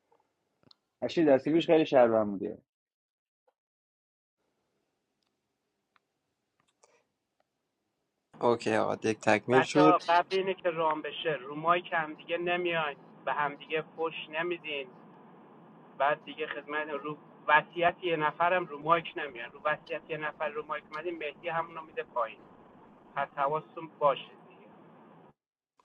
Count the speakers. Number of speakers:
three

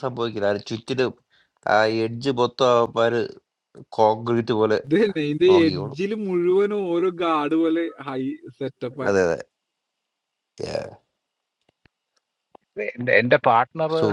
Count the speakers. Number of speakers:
three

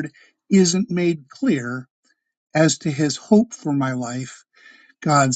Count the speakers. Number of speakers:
one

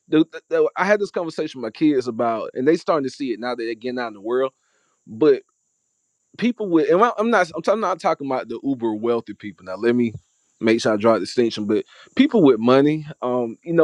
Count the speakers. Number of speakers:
one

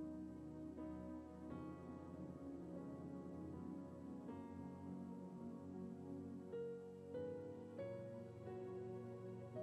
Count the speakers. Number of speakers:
zero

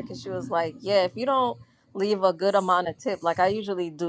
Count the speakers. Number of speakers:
one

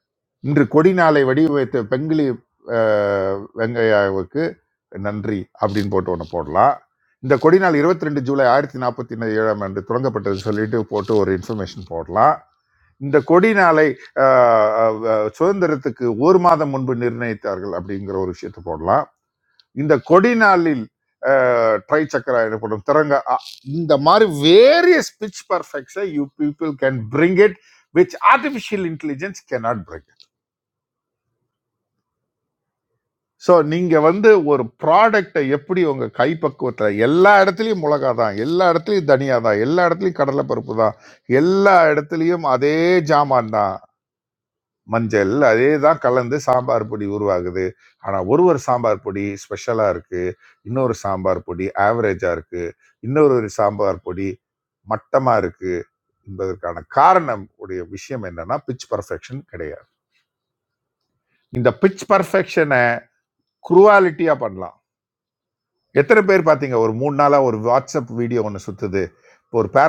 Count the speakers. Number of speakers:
one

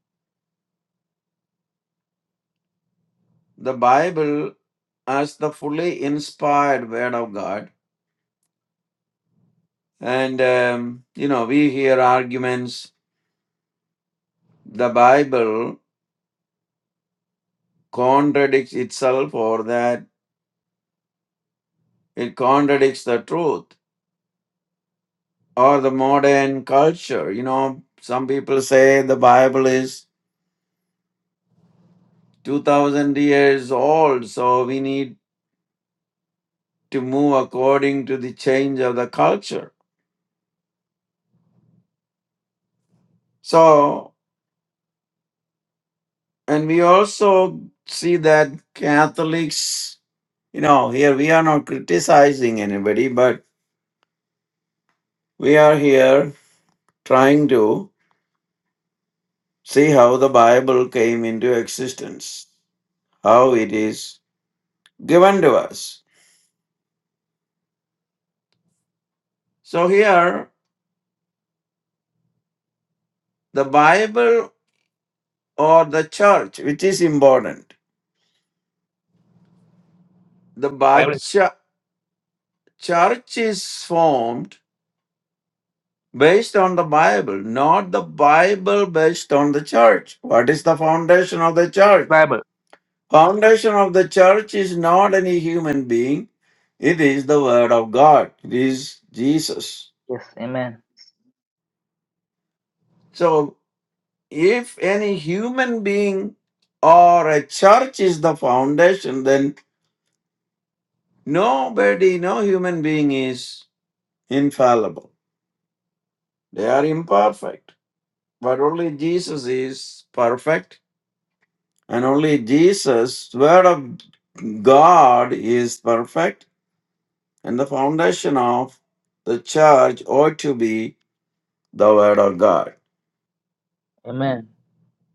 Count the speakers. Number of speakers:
two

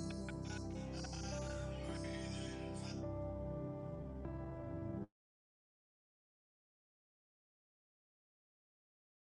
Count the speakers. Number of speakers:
zero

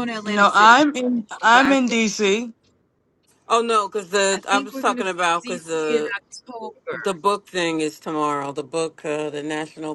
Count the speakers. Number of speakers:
three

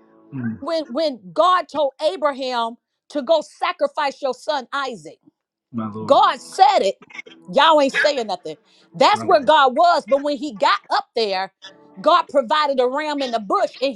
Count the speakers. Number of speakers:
two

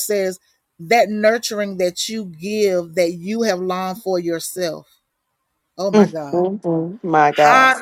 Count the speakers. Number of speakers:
two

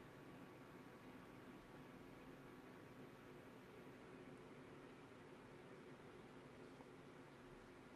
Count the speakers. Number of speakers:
zero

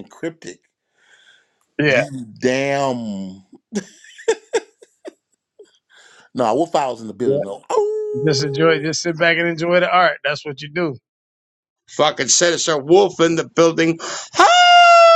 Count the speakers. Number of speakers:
three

